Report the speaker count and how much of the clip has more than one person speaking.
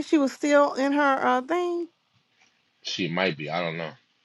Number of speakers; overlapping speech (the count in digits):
2, no overlap